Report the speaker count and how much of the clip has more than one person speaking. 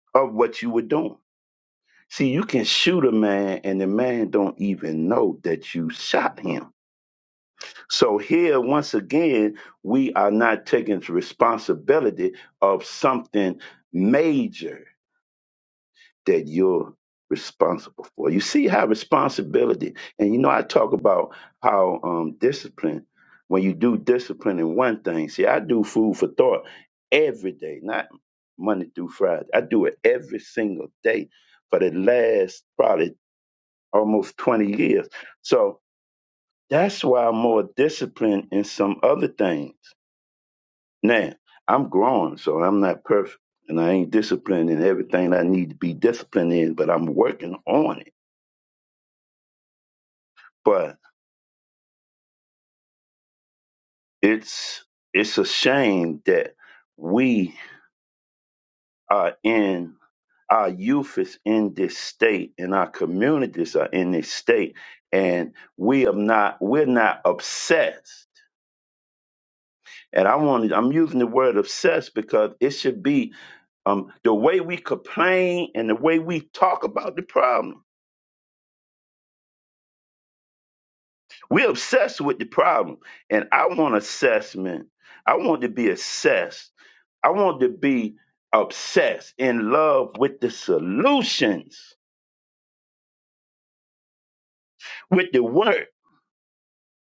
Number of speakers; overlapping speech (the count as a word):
one, no overlap